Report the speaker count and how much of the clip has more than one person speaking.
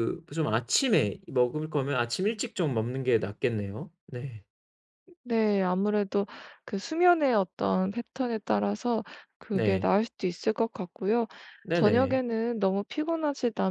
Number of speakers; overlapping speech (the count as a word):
two, about 5%